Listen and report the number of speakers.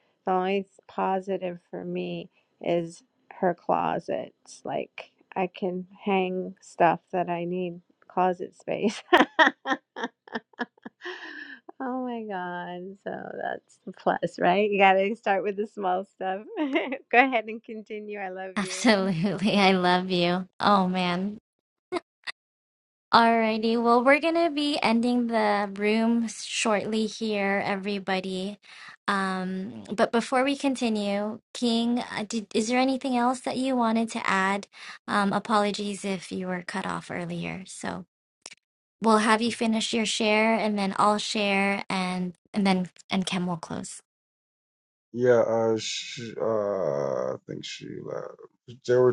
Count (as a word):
three